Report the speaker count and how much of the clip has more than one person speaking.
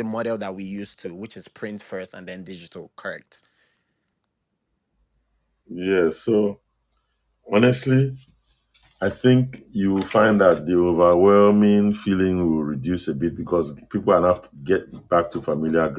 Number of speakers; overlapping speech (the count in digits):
2, no overlap